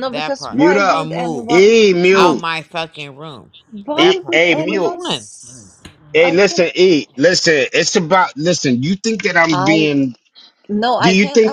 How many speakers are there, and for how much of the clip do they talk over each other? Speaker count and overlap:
three, about 37%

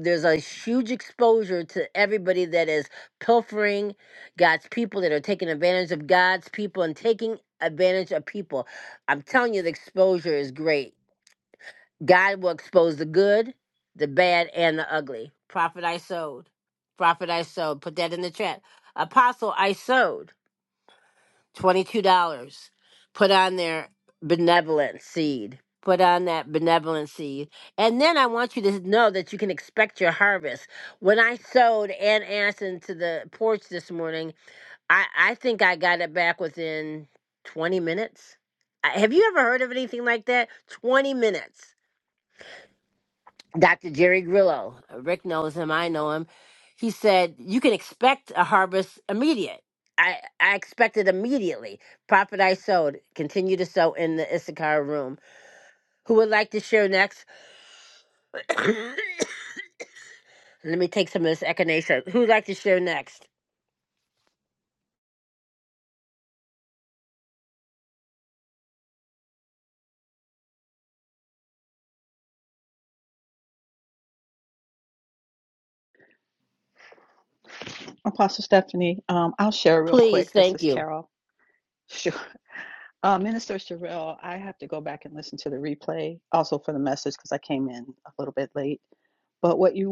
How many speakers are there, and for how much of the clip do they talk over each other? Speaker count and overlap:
two, about 1%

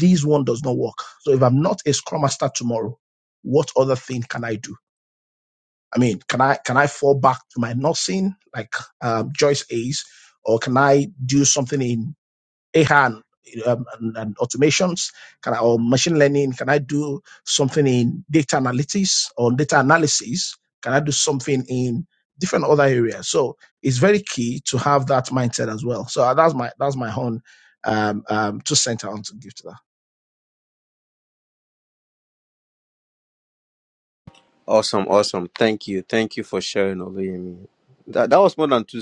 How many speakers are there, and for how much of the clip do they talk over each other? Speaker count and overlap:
two, no overlap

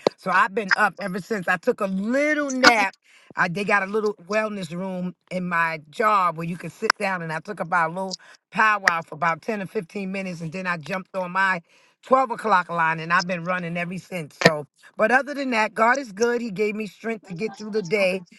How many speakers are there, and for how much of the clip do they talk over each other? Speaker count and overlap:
one, no overlap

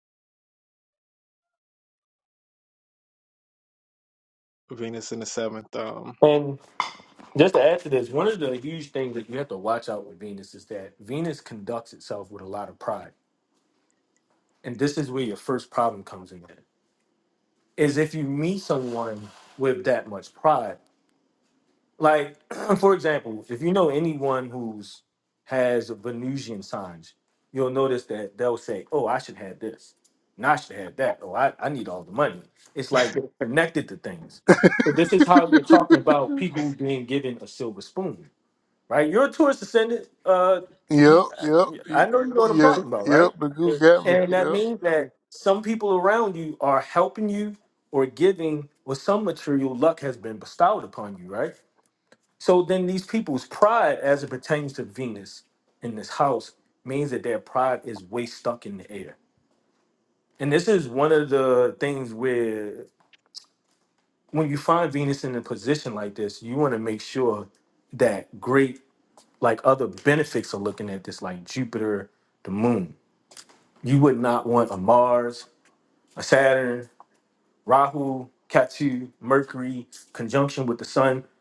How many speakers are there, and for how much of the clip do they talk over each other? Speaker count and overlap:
three, about 2%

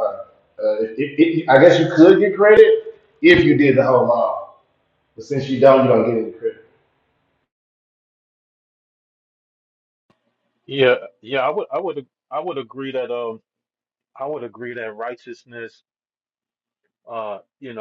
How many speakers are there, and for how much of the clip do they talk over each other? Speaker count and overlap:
two, no overlap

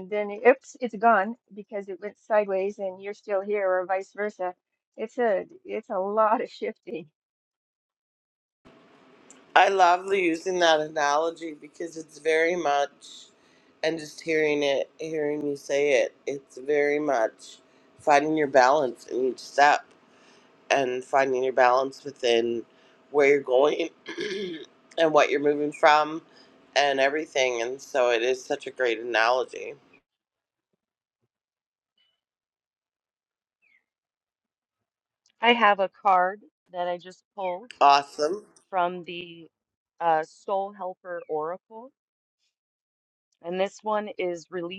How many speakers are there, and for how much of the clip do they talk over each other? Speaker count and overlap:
three, no overlap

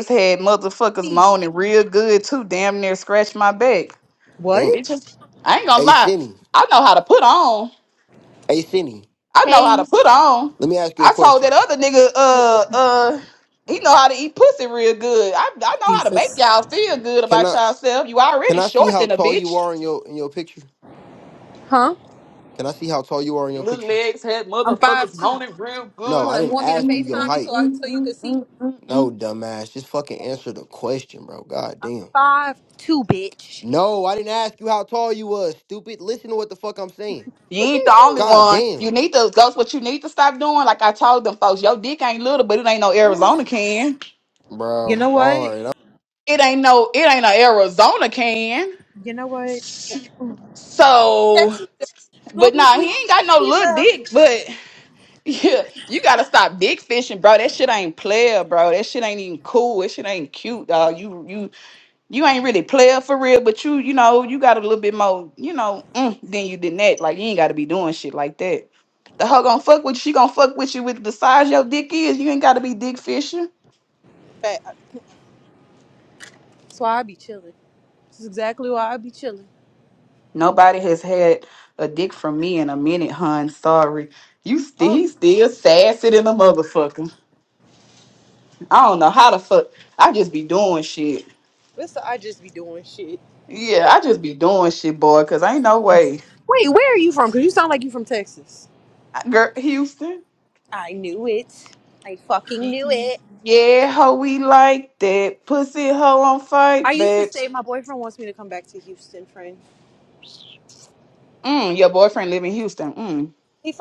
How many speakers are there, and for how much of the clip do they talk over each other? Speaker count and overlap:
three, about 10%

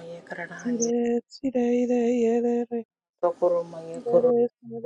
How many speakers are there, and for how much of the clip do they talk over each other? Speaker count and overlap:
two, about 11%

